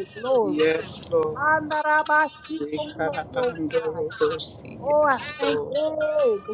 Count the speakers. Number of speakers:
2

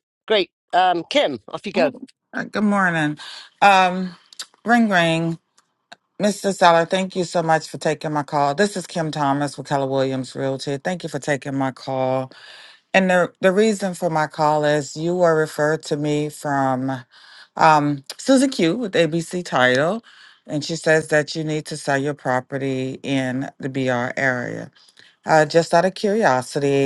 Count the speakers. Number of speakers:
2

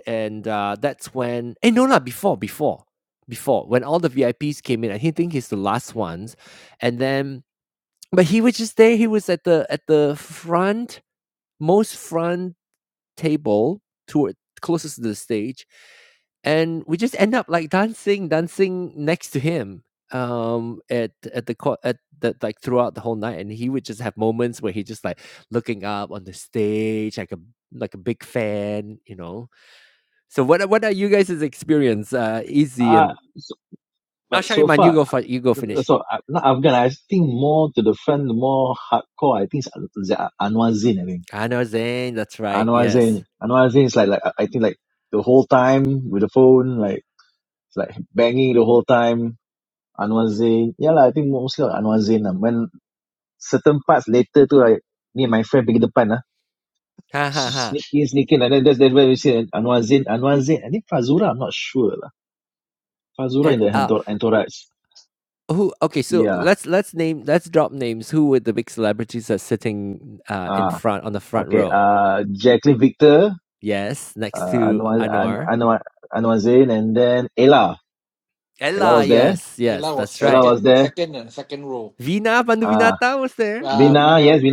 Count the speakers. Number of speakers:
3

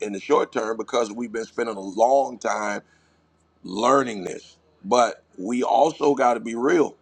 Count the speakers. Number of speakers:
1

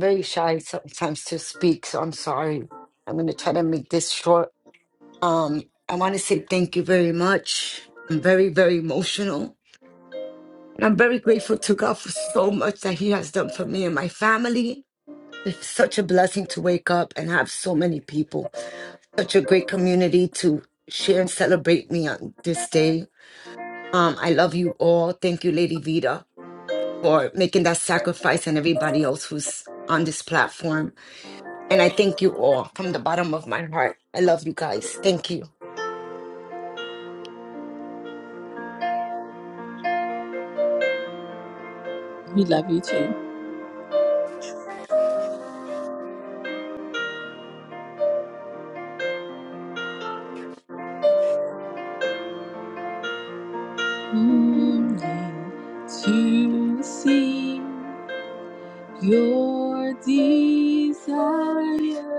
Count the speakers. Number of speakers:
2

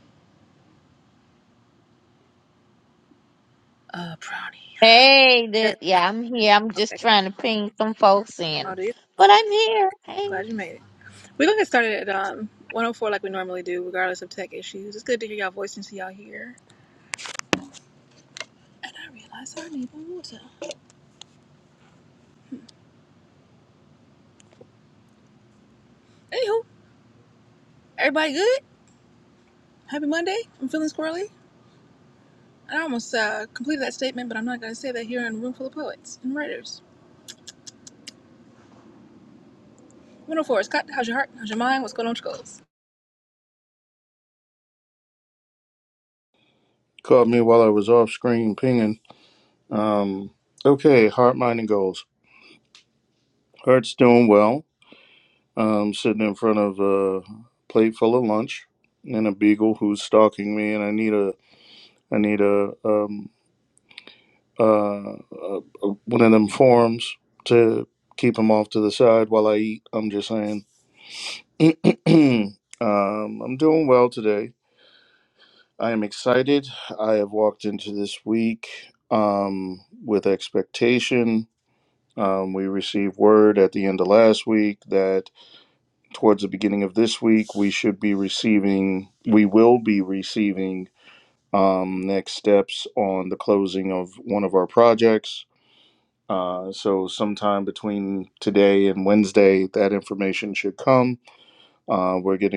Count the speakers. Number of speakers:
3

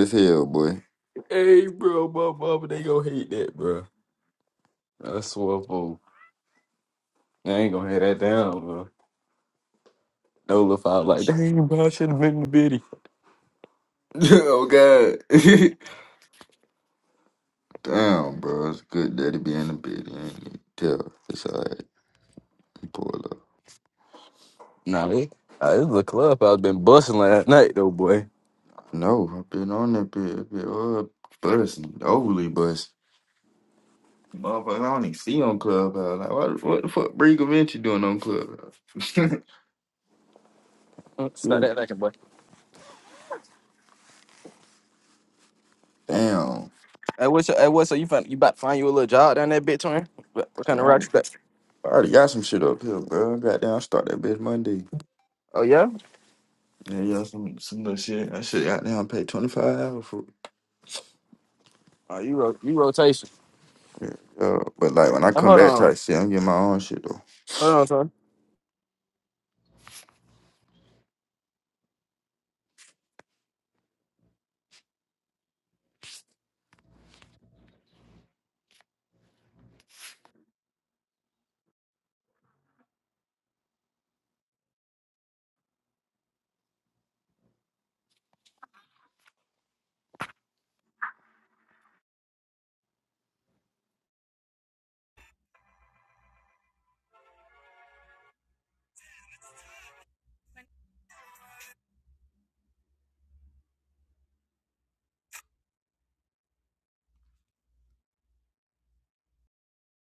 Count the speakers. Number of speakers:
2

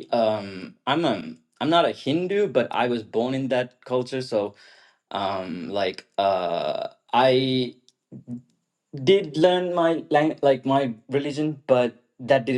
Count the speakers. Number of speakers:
1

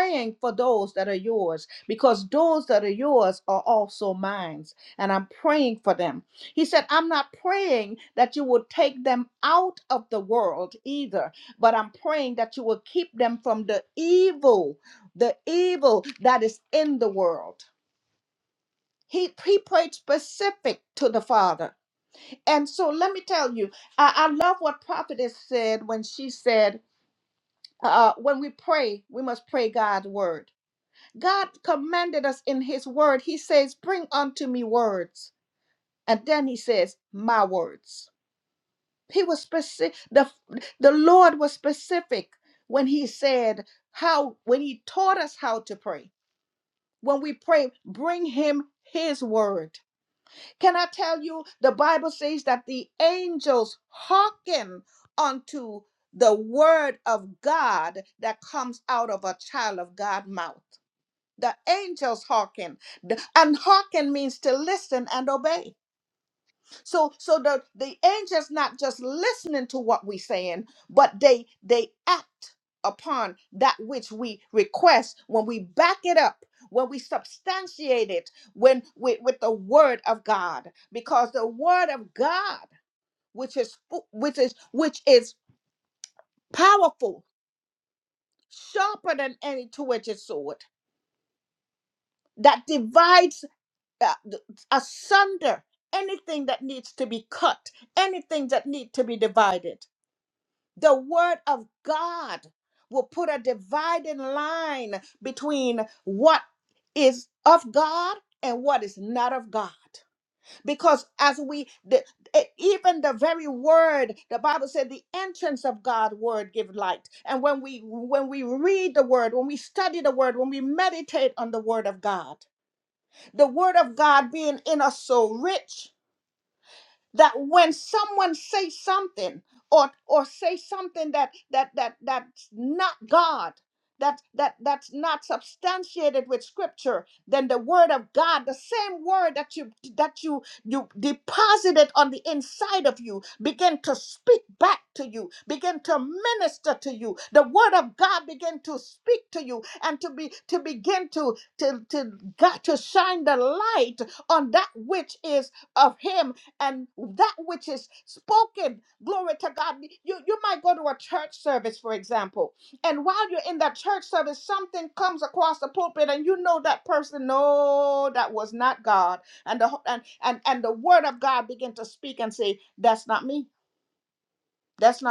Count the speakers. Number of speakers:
1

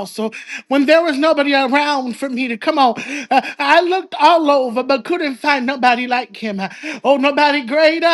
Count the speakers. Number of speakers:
1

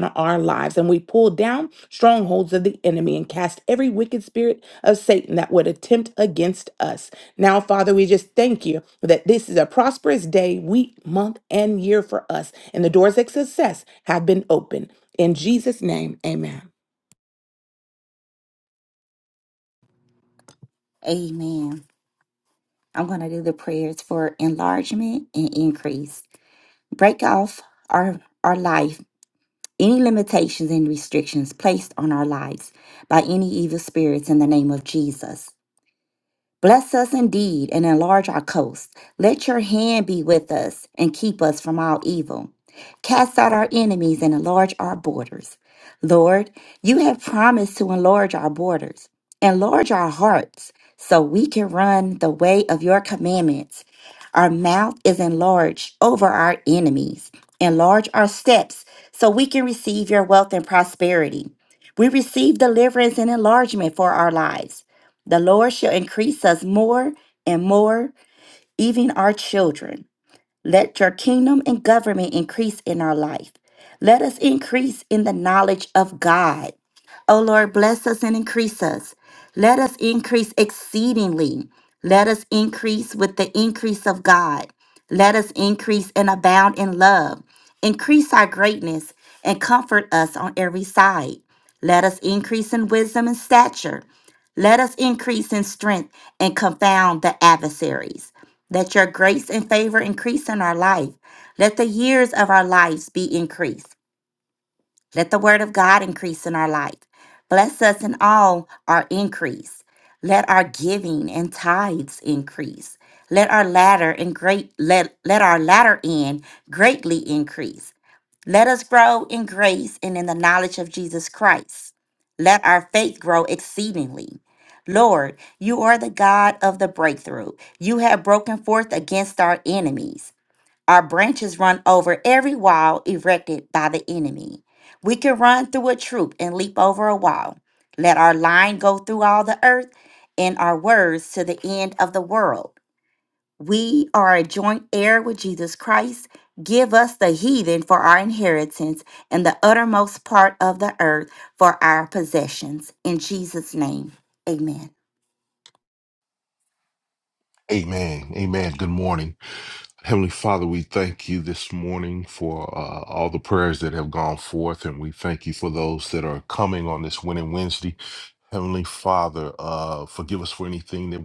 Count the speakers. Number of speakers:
3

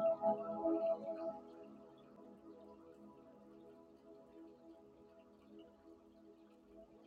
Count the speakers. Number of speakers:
0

